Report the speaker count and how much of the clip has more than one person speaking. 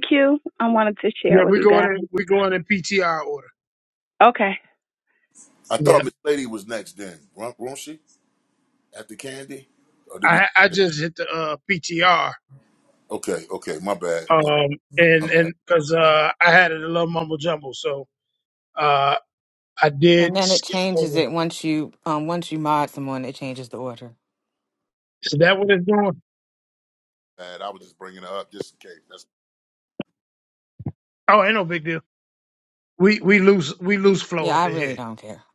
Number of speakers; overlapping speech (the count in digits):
4, about 9%